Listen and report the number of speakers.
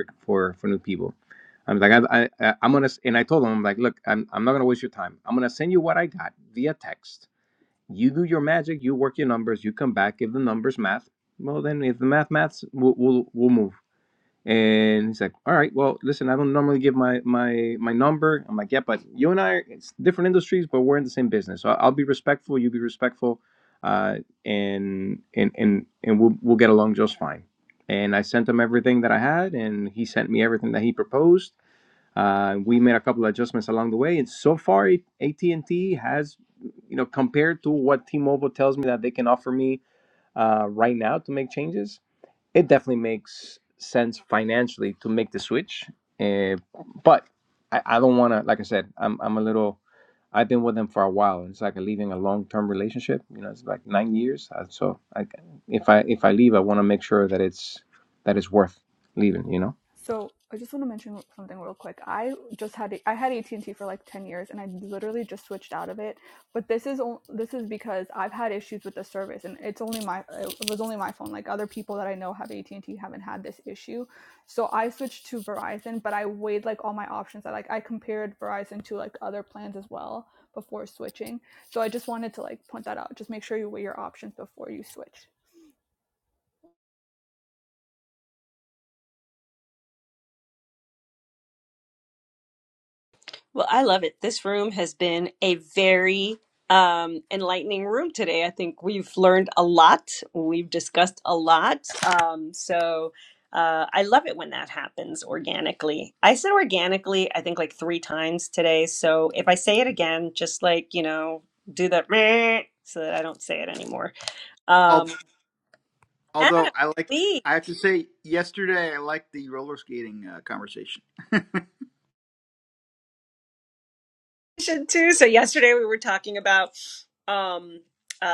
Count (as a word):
four